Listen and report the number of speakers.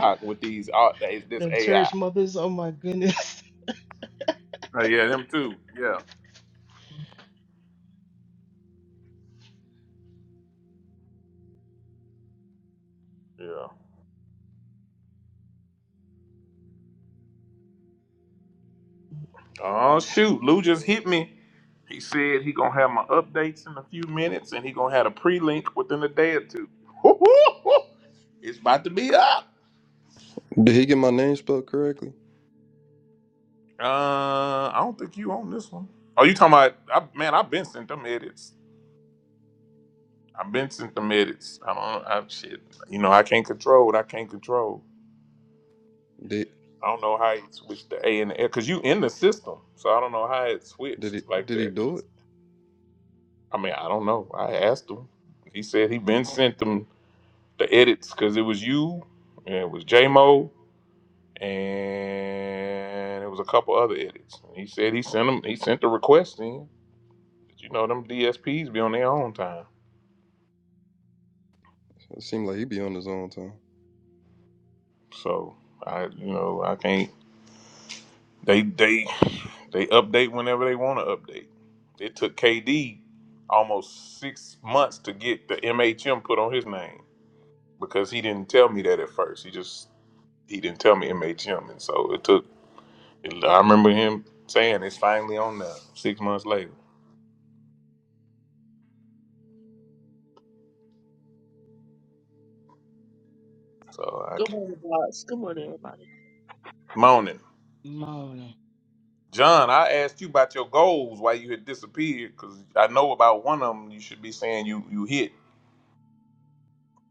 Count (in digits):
4